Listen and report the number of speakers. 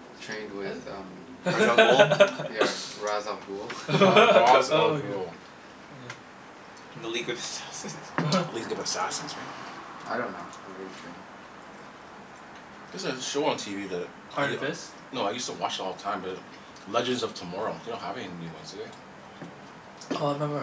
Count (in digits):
4